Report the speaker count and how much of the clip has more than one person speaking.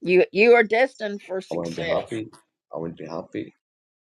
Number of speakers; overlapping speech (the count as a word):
two, about 15%